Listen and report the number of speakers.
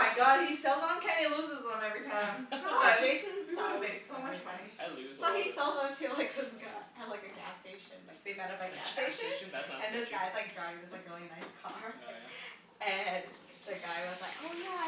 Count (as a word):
three